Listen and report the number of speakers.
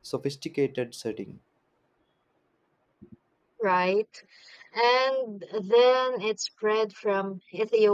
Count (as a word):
two